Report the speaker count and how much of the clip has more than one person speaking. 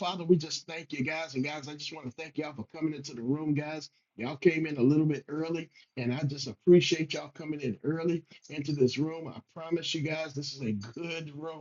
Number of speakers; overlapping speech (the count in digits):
1, no overlap